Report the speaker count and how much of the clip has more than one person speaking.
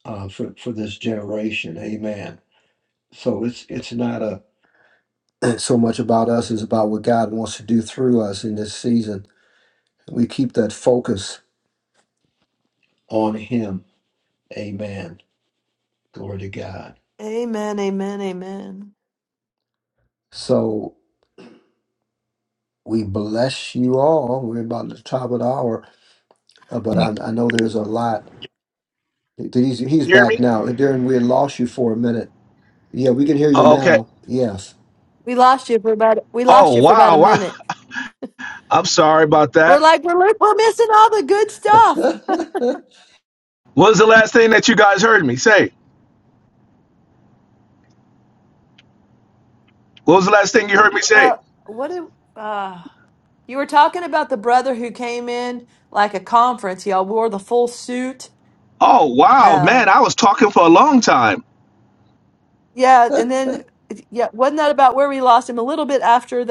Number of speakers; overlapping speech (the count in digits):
3, about 4%